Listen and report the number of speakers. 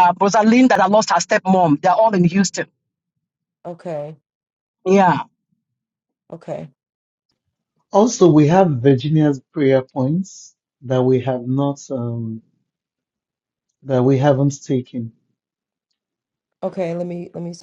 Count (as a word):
three